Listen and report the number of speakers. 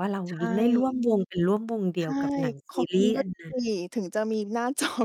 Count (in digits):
2